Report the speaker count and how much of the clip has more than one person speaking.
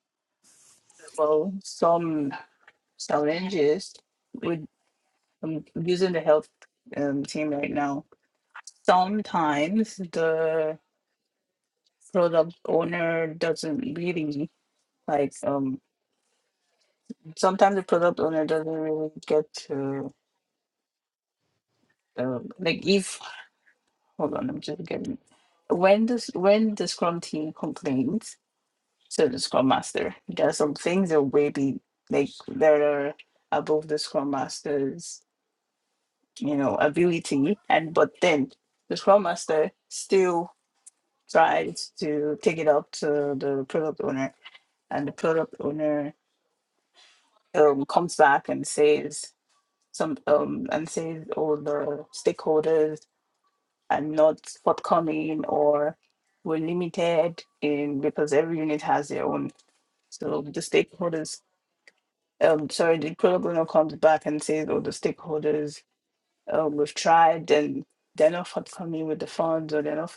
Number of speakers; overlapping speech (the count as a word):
one, no overlap